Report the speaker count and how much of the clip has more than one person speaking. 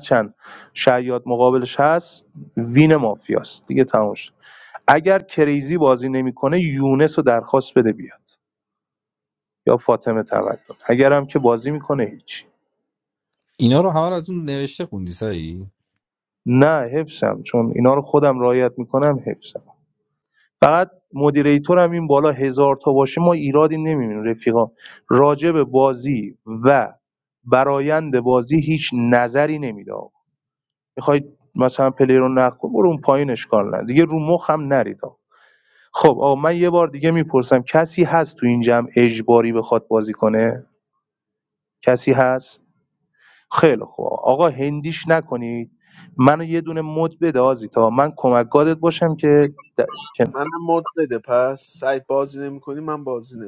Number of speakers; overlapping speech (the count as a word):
three, under 1%